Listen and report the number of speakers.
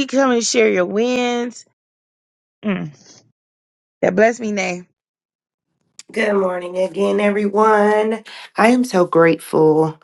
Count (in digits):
2